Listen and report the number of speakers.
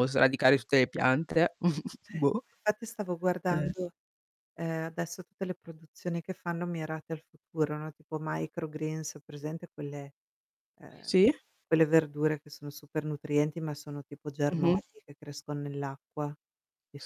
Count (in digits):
2